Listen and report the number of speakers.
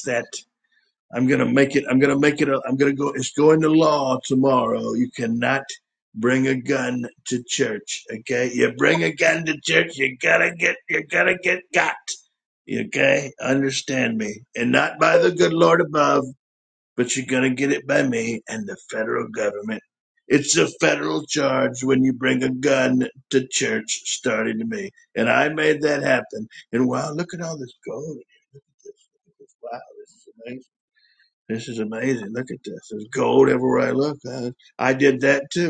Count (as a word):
one